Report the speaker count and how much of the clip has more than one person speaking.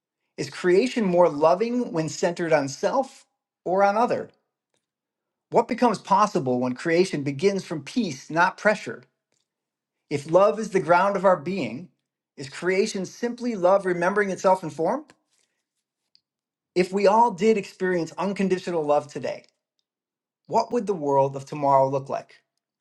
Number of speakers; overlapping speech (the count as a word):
one, no overlap